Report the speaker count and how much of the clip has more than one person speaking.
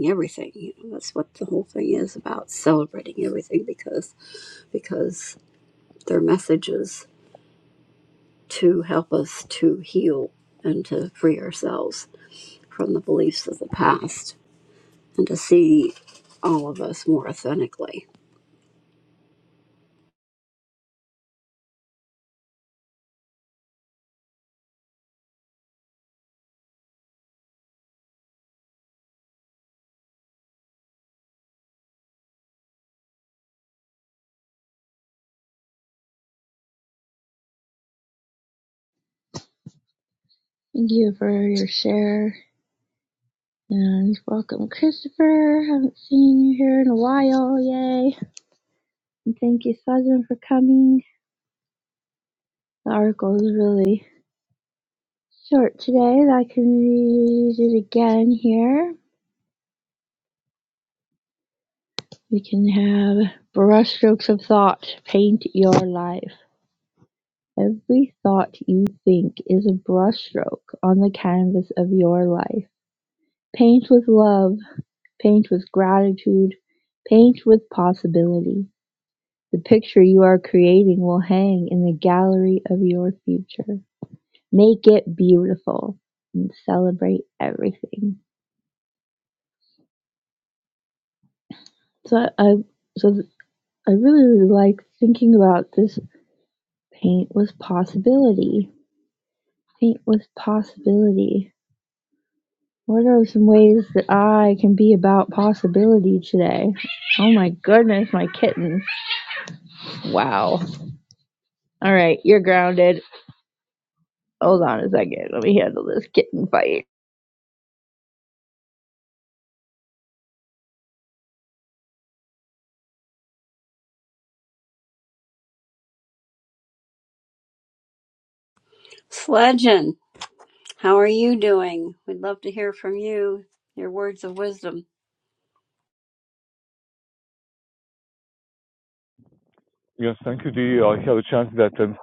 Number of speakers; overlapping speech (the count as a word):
three, no overlap